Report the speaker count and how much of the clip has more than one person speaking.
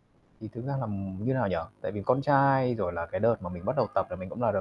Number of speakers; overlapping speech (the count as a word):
one, no overlap